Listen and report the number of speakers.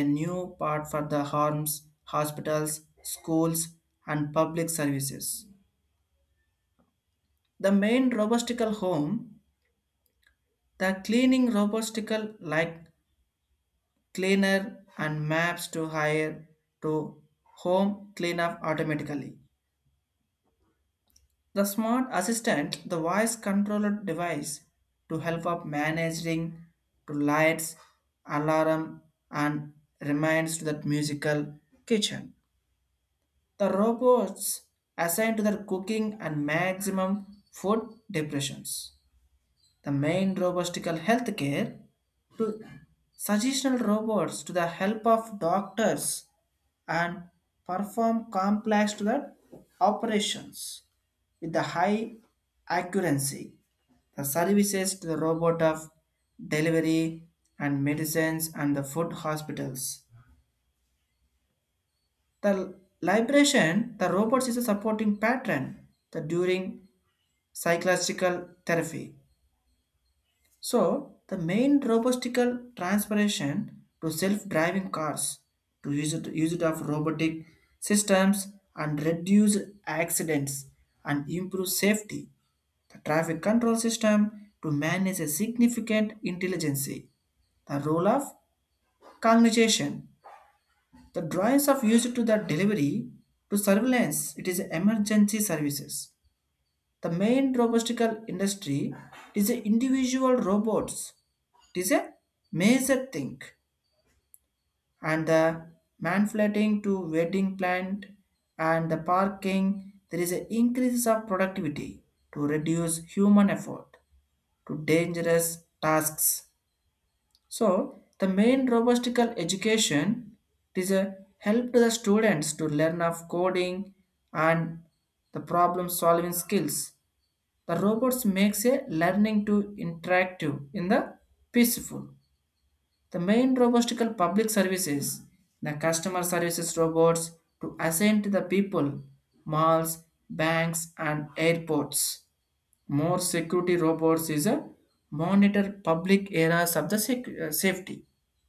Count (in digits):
1